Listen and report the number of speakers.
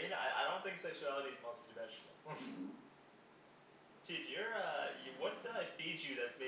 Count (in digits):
1